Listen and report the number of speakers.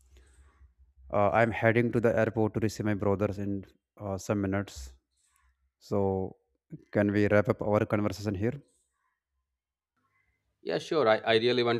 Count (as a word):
two